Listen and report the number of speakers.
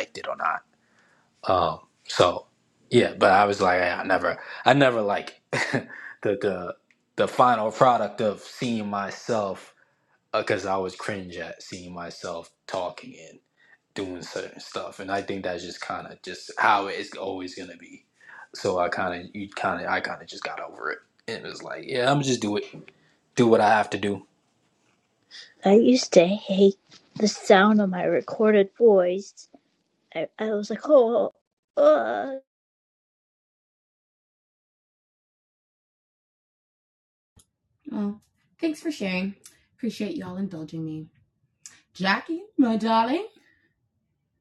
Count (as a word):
three